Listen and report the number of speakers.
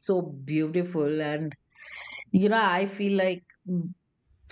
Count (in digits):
1